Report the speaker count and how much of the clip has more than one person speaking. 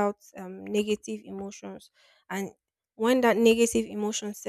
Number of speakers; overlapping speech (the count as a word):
one, no overlap